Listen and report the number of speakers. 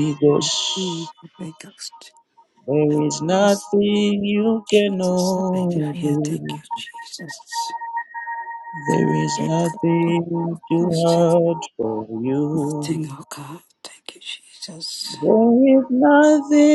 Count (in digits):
2